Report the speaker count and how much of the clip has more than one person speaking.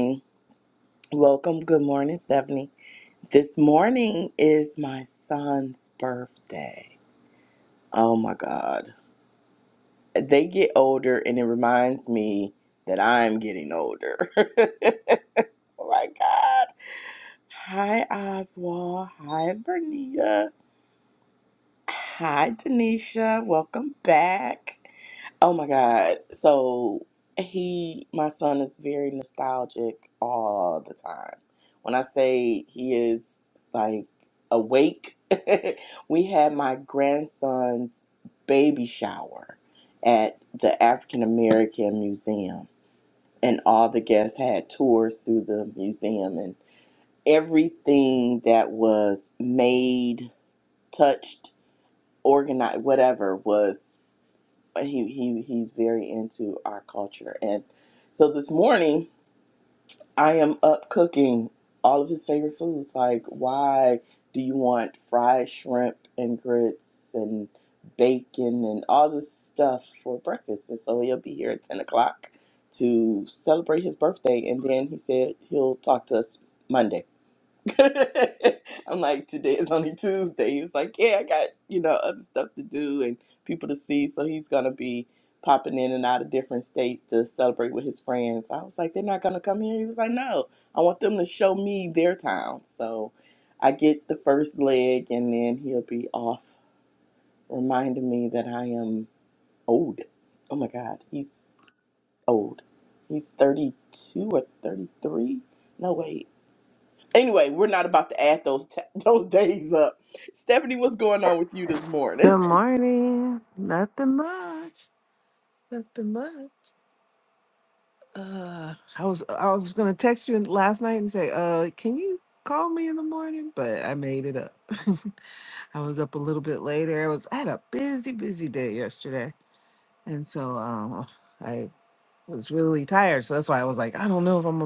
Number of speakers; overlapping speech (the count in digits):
2, under 1%